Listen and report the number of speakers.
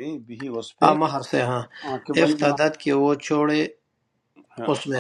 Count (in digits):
2